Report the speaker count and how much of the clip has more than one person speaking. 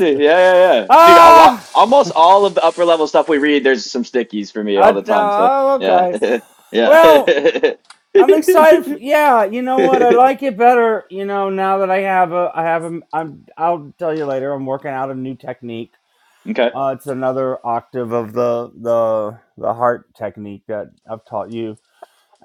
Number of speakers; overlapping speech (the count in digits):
2, about 10%